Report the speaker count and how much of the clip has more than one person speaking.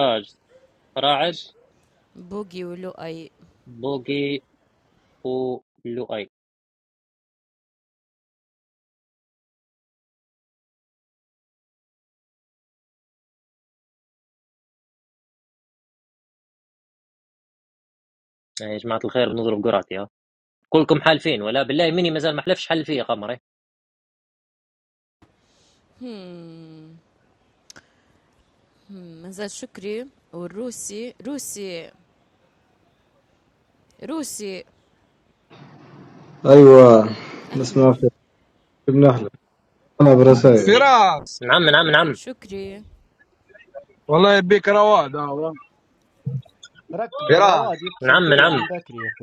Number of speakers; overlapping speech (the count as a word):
five, about 3%